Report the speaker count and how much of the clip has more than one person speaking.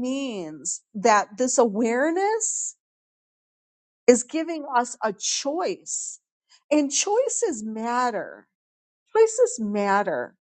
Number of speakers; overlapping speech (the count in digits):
1, no overlap